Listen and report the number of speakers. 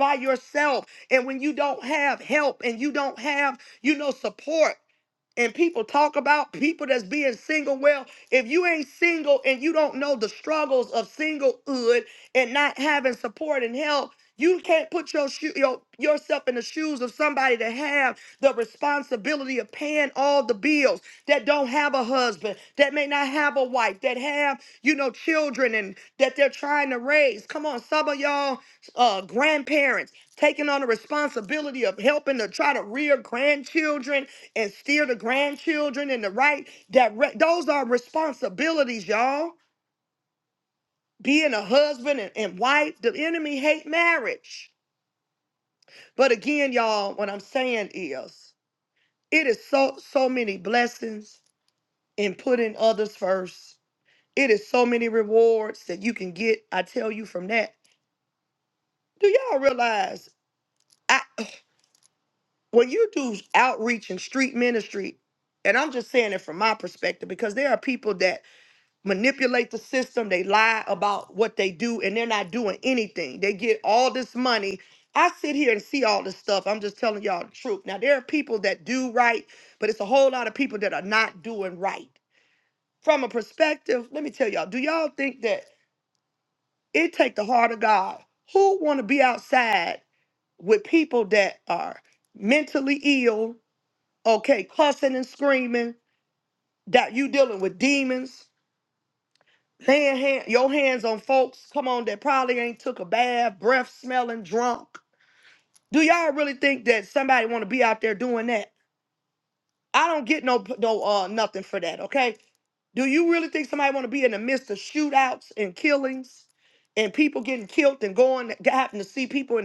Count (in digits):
1